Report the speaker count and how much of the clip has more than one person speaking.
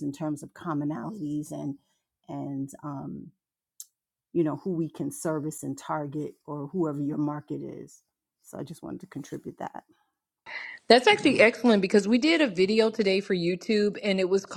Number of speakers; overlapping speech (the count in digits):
2, no overlap